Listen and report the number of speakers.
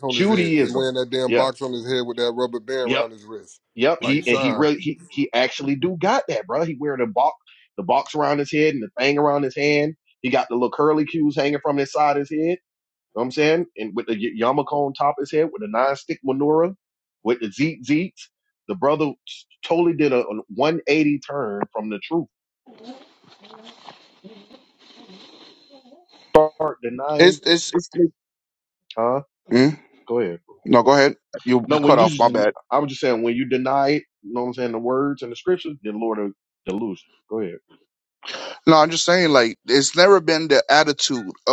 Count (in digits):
3